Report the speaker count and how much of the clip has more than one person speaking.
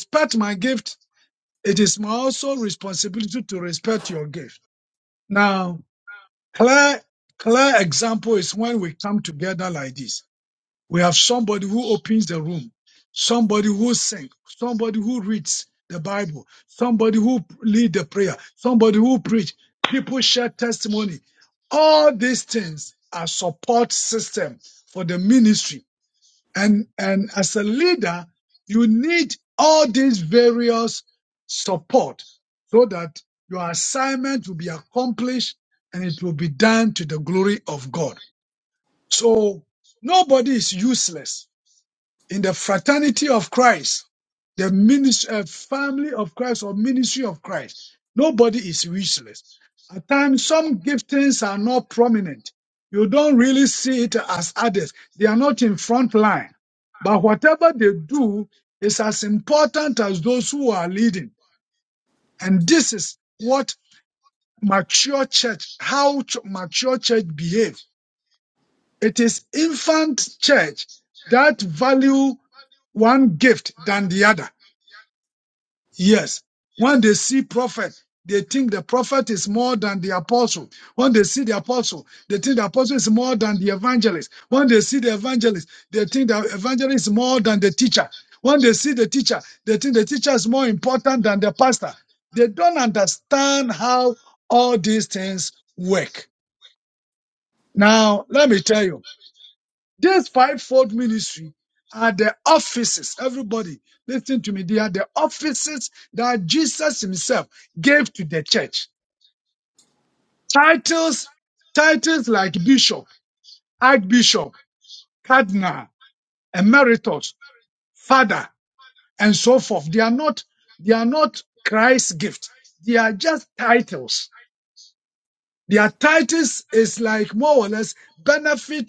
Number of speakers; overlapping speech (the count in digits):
1, no overlap